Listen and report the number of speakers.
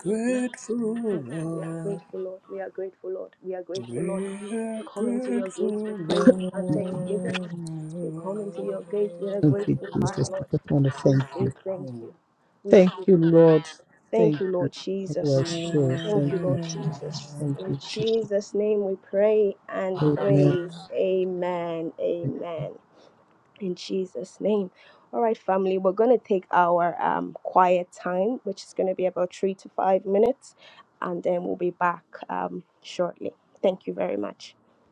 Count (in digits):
3